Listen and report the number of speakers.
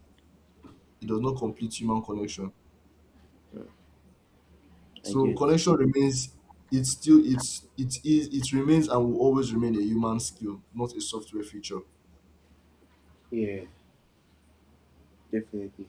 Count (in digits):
2